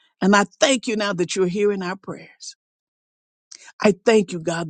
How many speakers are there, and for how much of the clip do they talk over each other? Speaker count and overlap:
1, no overlap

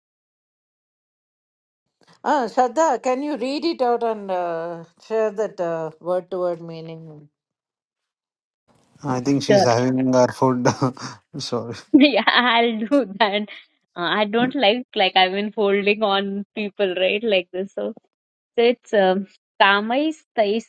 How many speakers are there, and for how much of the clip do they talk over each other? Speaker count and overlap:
3, about 2%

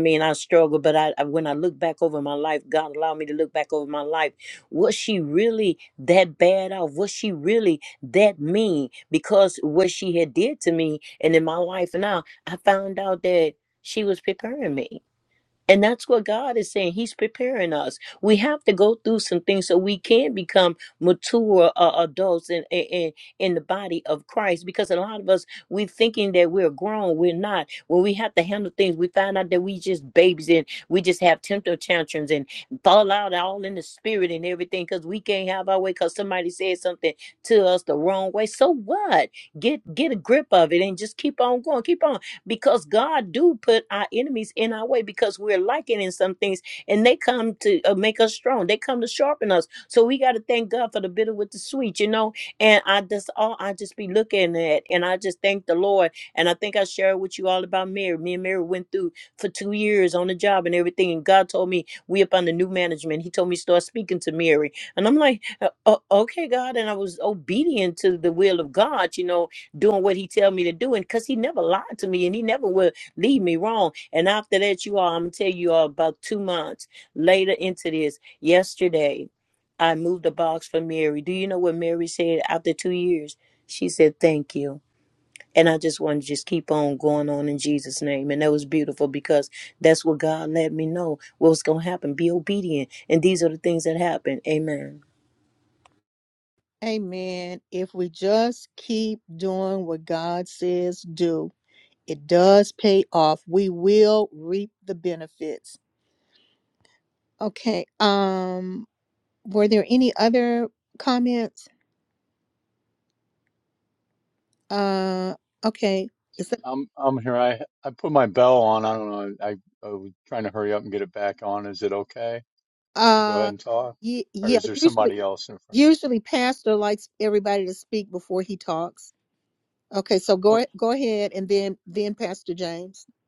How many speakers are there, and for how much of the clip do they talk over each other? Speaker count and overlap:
3, about 1%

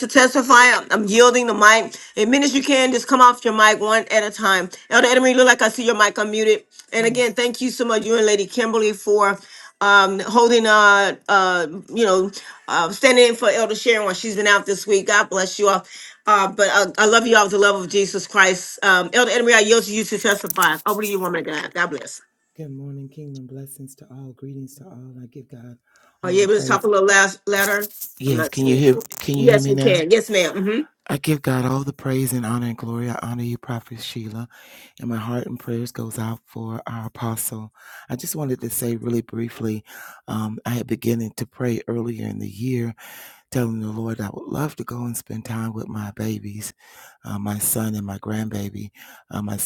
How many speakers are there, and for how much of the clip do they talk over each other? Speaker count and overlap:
2, about 4%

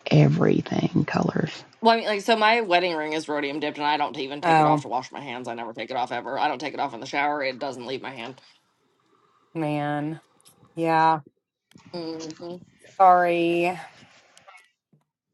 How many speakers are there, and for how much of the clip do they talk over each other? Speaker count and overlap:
3, about 2%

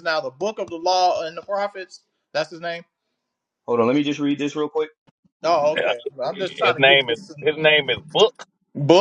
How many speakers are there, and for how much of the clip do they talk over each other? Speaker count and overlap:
3, about 10%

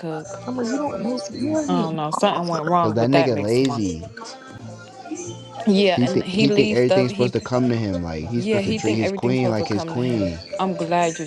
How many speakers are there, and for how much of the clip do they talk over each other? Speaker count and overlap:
3, about 42%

